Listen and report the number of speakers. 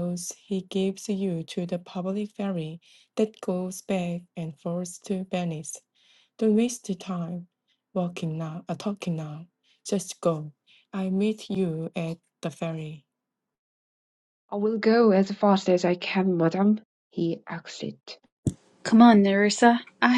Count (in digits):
3